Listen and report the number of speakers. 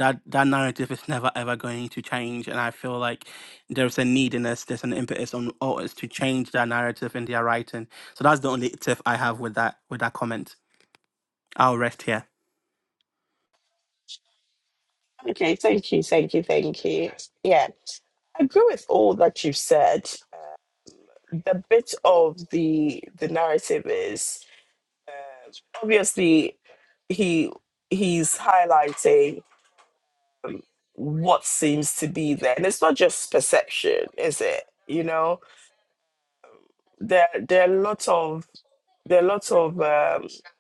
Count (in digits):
2